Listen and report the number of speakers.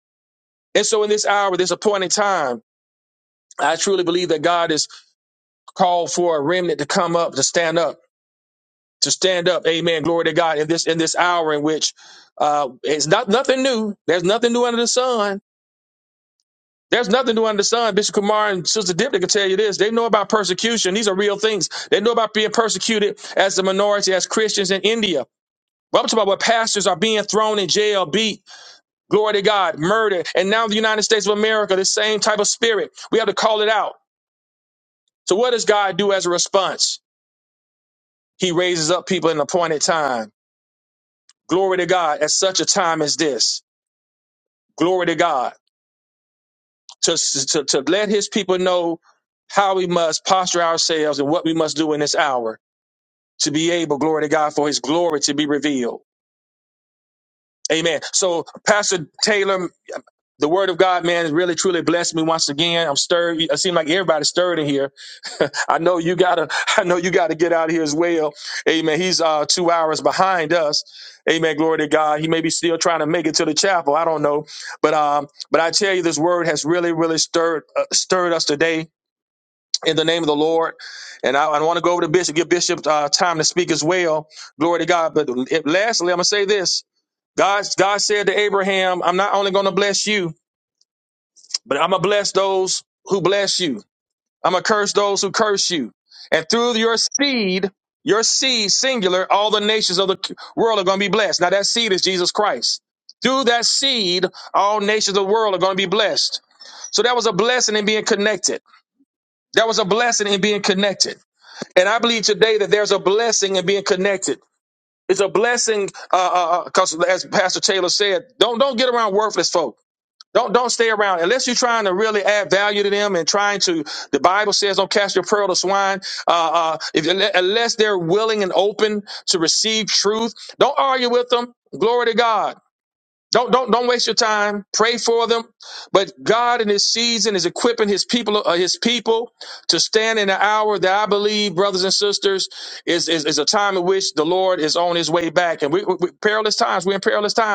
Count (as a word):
one